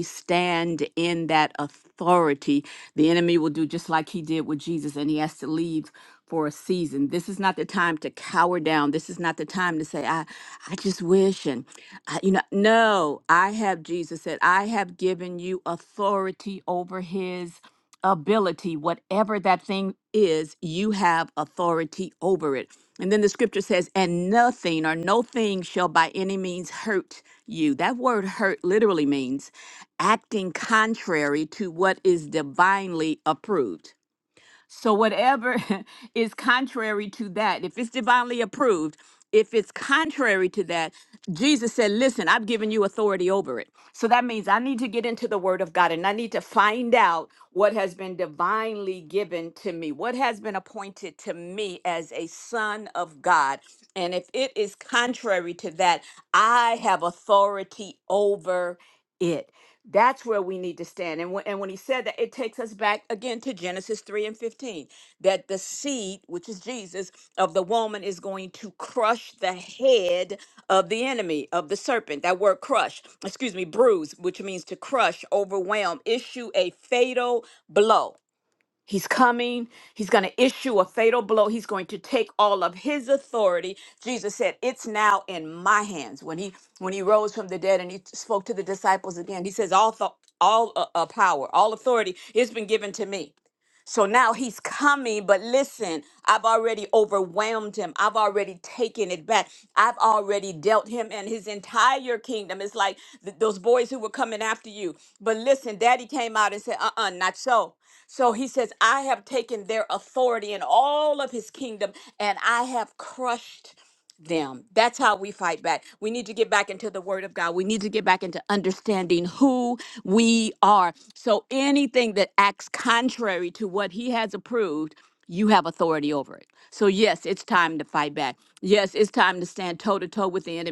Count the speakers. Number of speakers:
1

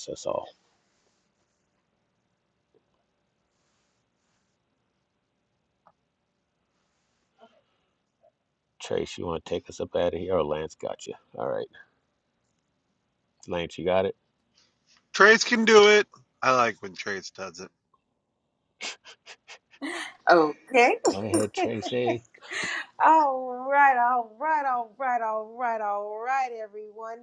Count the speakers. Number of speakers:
3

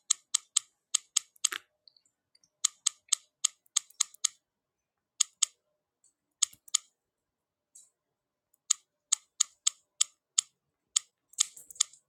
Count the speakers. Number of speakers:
0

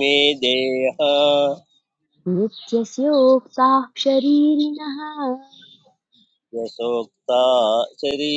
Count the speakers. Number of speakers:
2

